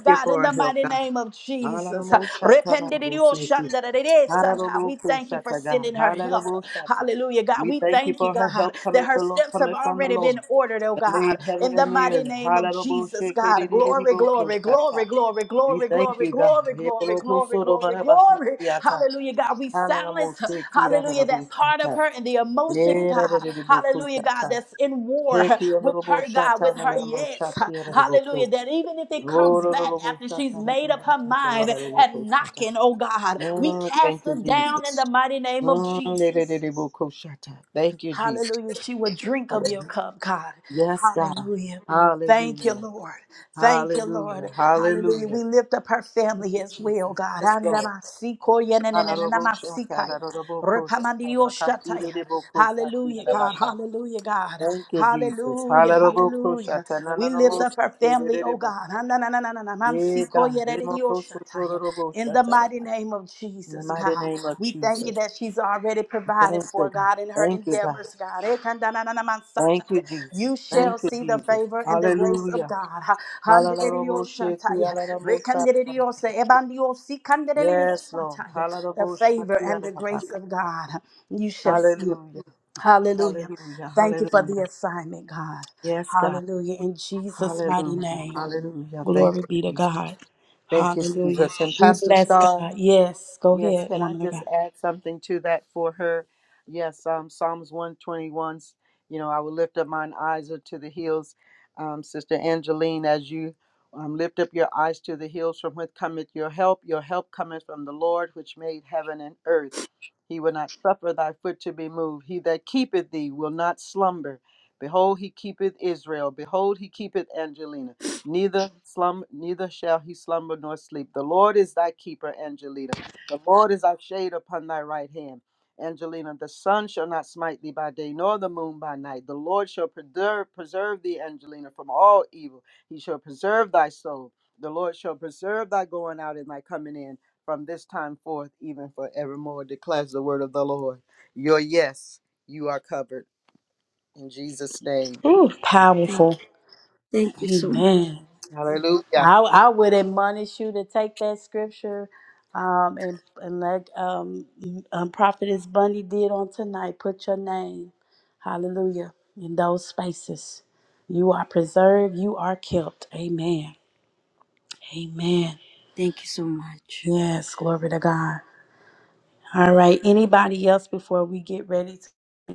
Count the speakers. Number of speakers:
three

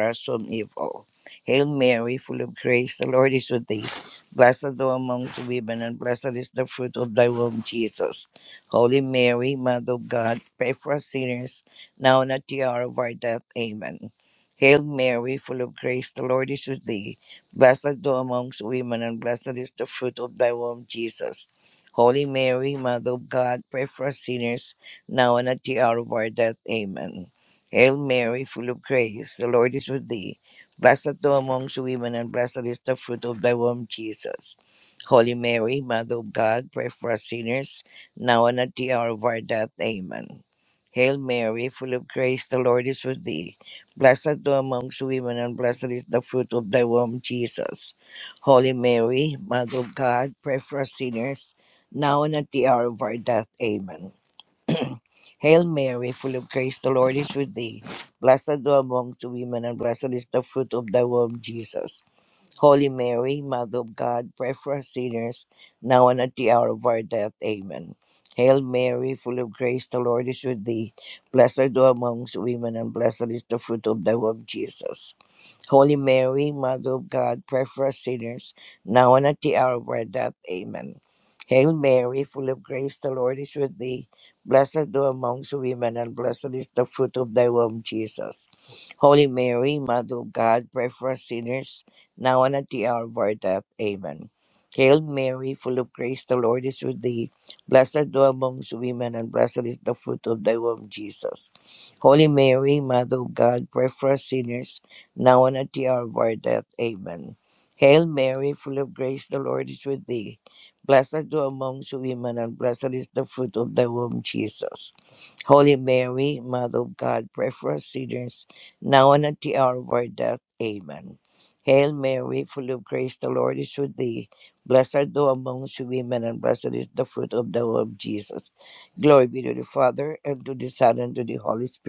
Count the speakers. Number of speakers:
one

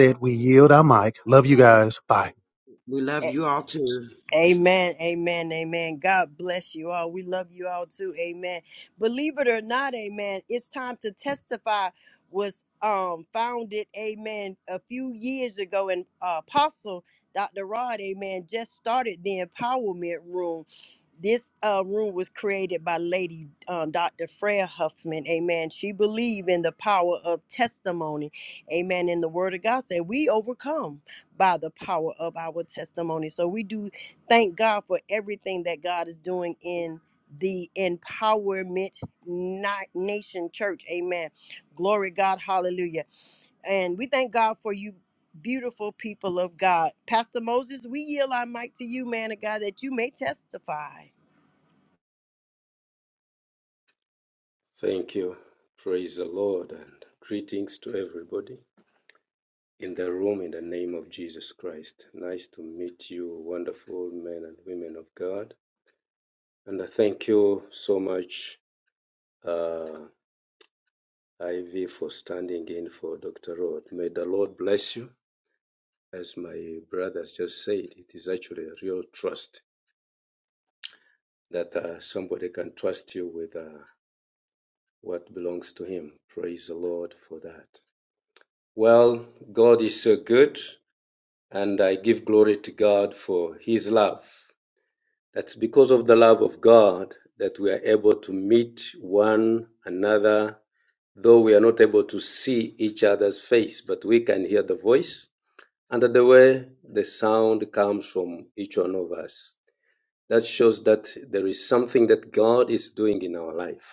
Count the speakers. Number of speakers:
four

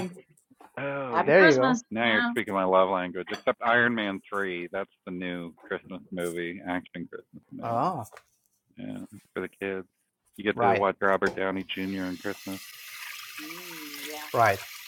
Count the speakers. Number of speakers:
three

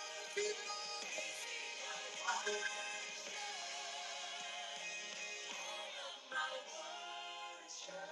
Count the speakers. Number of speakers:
zero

